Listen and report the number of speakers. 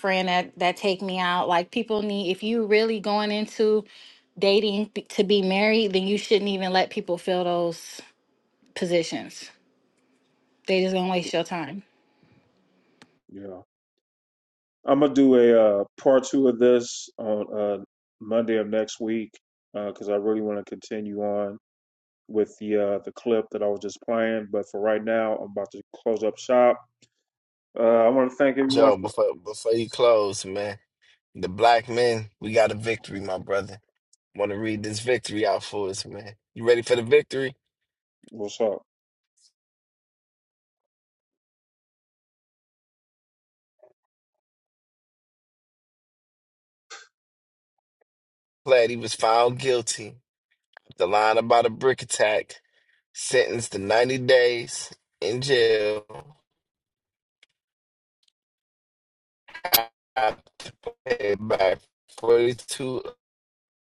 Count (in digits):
3